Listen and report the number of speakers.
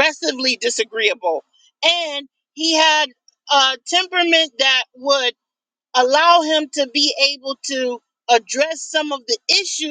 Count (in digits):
1